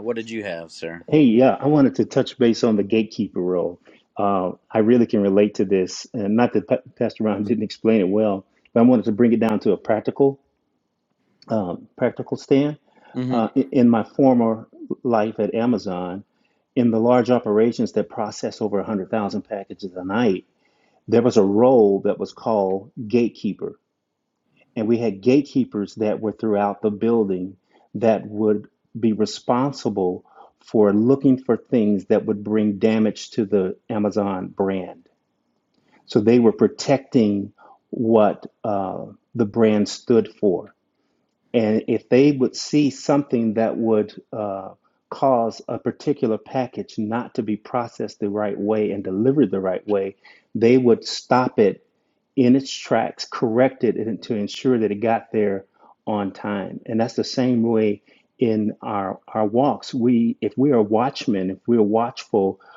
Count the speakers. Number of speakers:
2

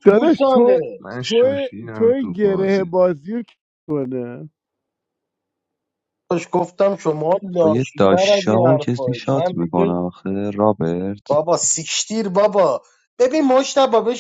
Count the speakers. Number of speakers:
4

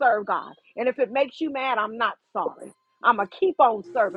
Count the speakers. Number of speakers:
1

